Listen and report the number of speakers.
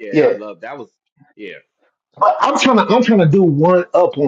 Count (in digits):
2